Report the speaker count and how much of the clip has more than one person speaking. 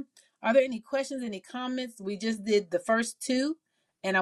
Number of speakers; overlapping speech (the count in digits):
1, no overlap